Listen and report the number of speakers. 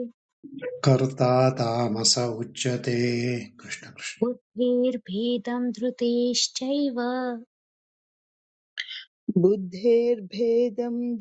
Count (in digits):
3